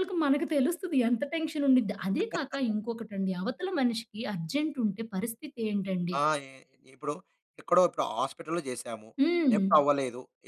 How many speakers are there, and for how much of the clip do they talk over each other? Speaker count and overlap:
2, about 2%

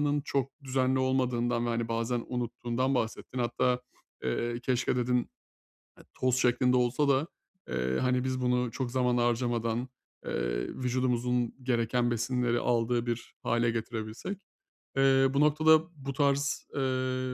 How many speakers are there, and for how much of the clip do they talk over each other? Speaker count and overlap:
1, no overlap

